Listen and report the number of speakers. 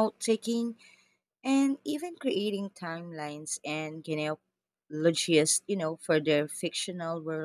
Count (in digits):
1